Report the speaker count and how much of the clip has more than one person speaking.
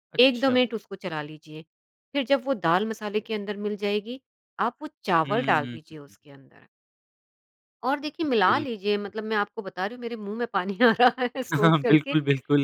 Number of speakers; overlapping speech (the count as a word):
two, about 11%